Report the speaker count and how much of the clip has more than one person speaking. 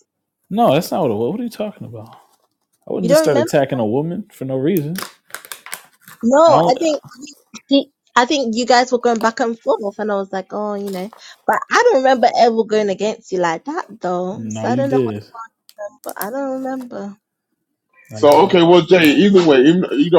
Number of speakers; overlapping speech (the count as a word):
three, about 9%